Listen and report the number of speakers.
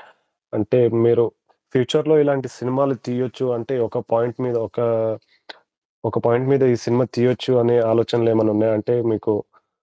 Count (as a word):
one